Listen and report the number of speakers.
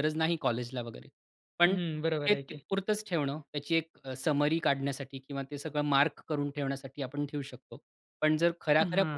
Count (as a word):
two